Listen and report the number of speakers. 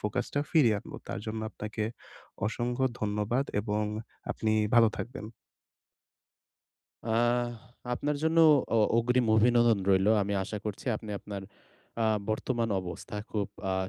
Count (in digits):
2